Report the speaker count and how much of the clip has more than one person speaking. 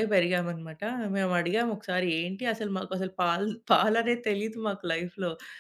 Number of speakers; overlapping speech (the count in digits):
1, no overlap